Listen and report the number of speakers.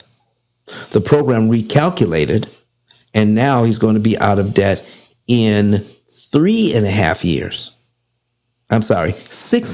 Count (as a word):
one